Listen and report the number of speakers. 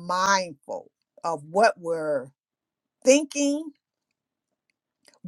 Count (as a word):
one